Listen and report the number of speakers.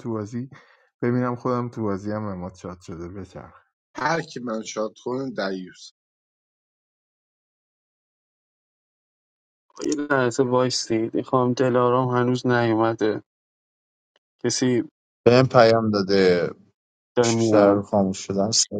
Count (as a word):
four